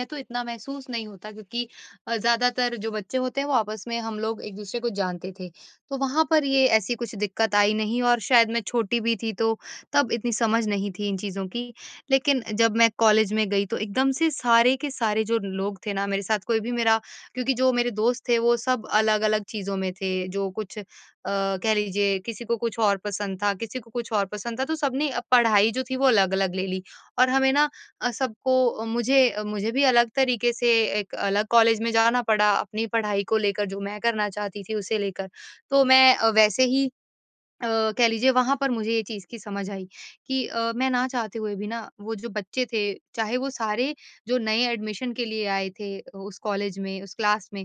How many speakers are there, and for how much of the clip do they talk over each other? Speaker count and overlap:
1, no overlap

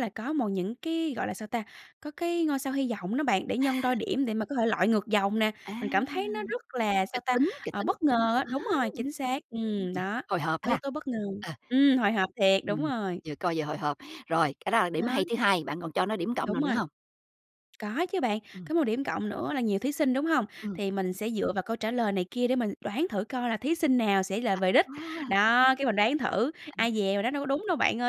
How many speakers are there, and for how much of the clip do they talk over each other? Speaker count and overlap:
2, about 8%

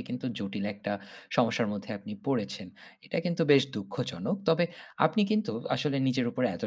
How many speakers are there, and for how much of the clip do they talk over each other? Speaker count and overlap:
1, no overlap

